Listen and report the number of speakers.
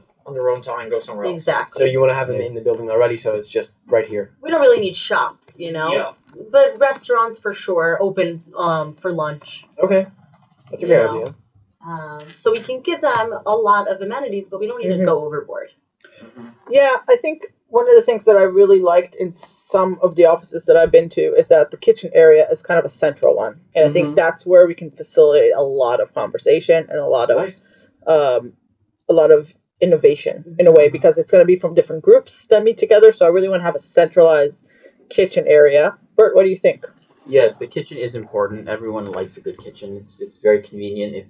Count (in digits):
5